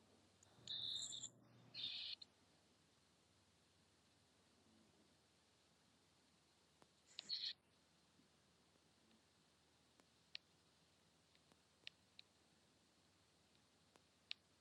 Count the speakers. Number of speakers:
0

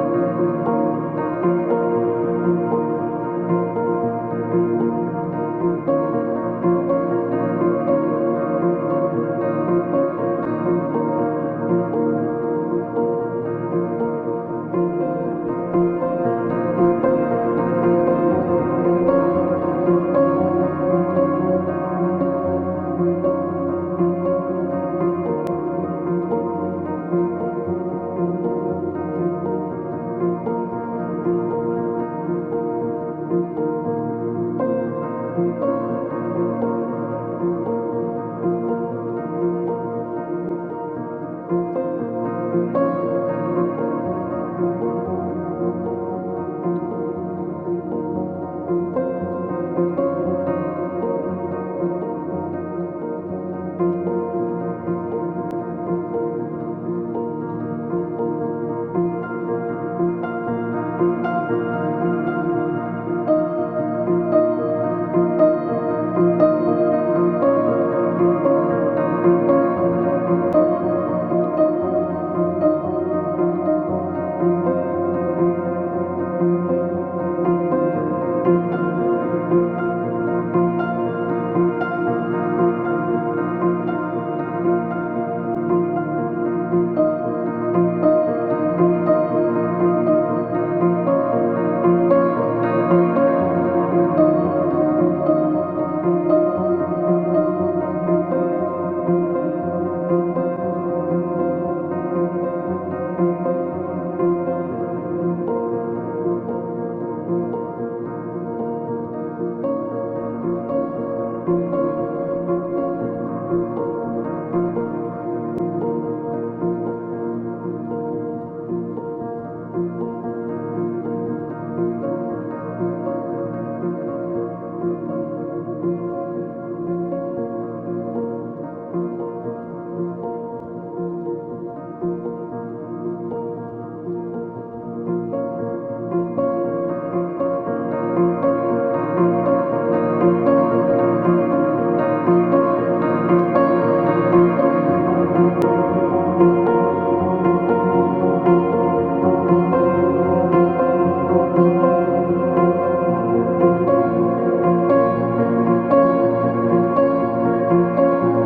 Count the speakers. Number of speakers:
0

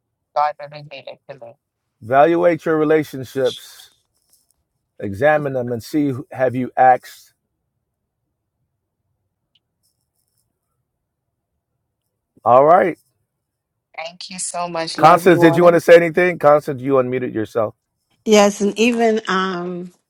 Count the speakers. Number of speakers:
3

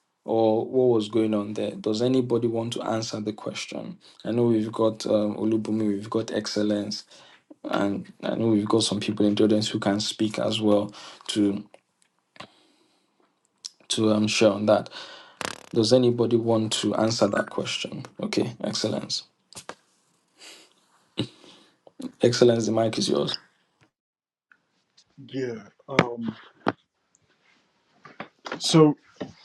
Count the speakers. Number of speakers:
2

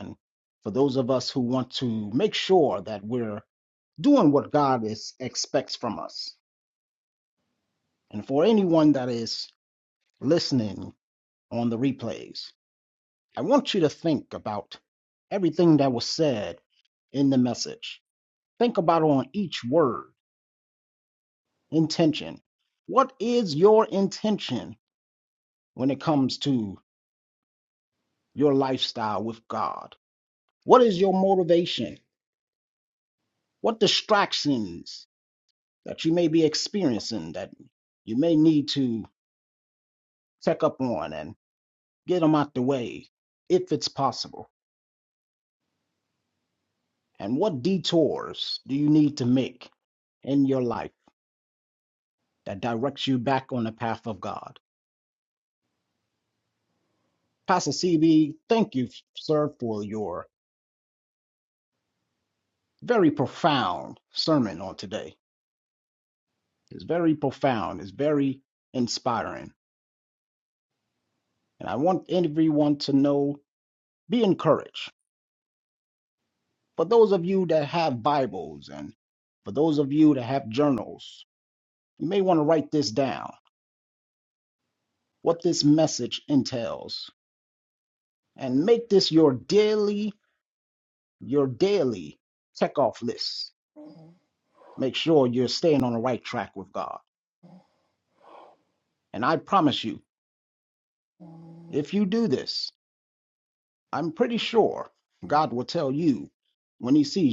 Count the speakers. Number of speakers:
1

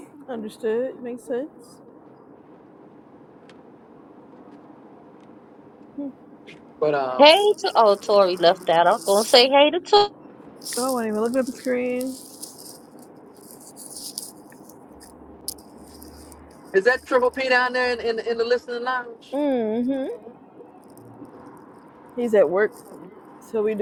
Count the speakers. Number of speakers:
3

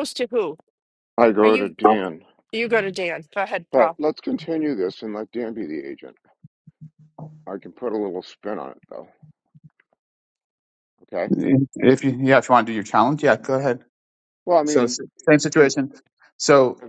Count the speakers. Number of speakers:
3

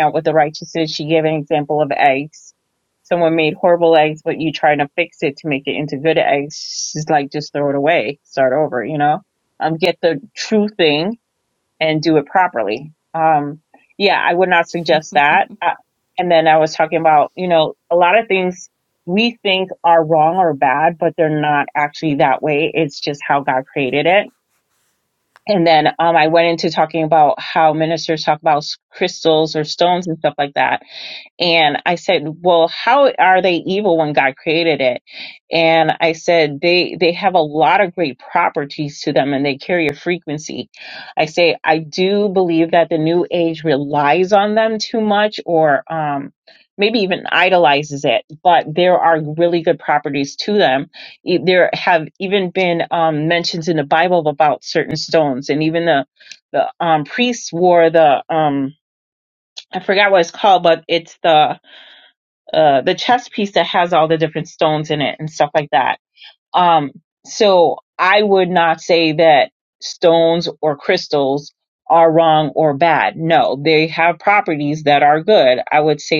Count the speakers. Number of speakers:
1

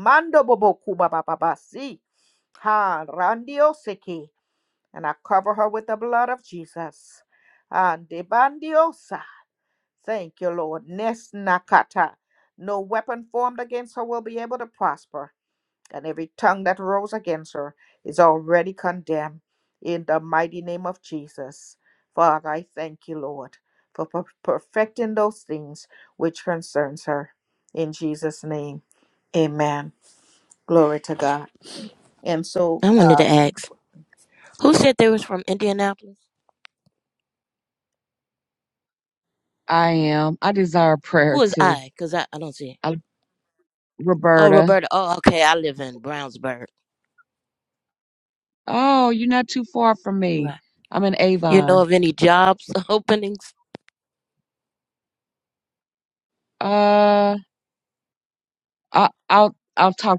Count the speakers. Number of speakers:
3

